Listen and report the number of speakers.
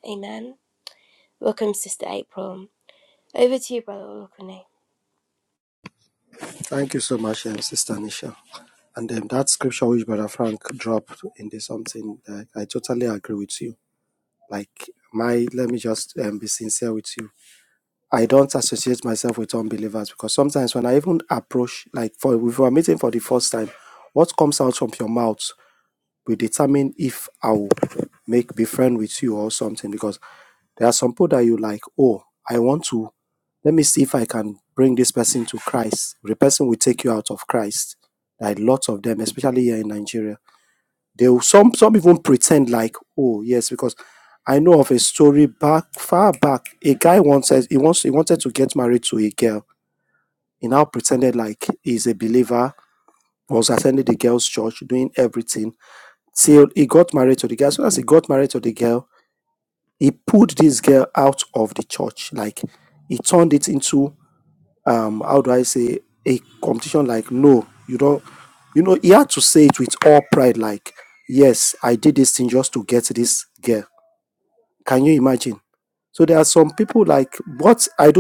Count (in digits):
2